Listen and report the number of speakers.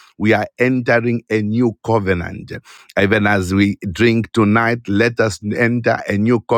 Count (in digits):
1